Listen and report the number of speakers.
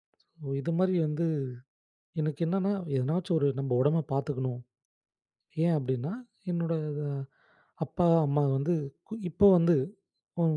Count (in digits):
1